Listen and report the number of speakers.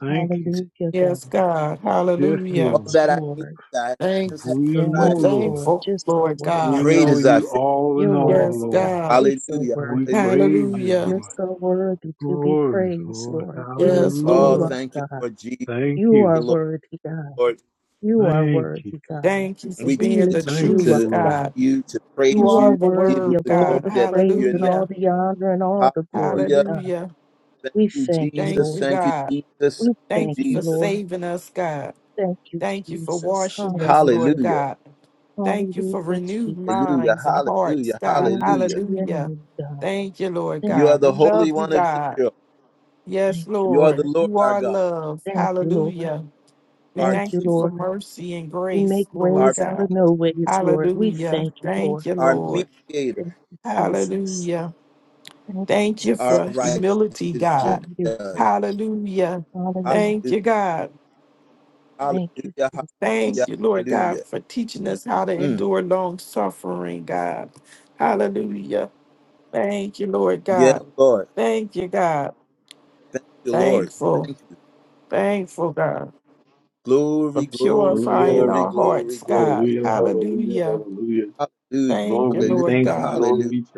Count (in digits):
5